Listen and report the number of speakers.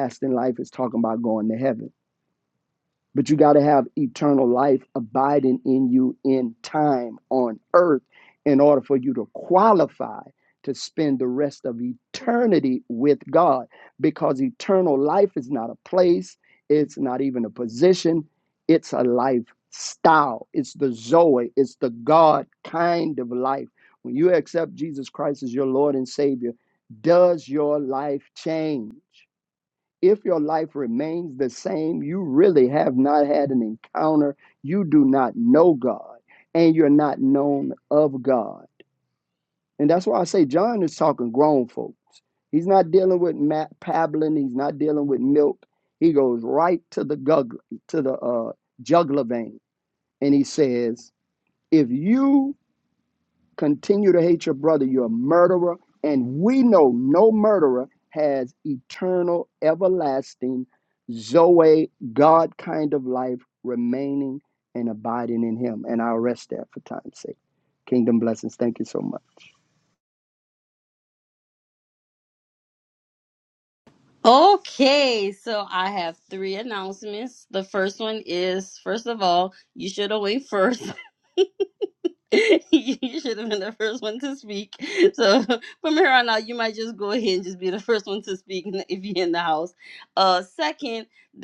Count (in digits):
2